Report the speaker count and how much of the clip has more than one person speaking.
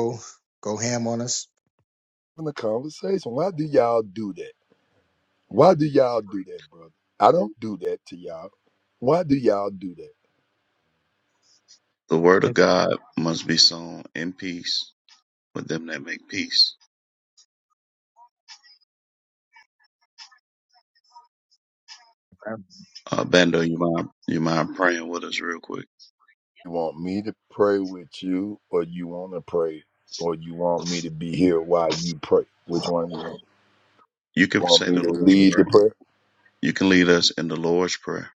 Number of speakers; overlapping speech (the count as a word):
three, about 3%